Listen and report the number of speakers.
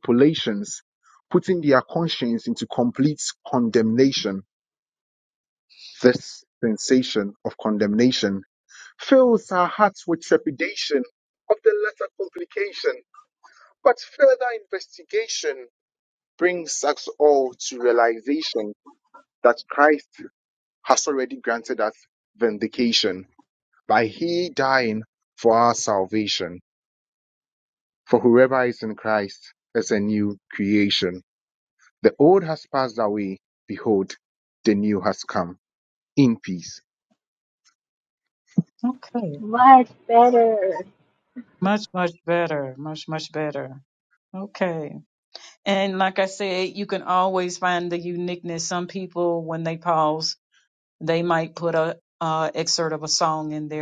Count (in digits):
3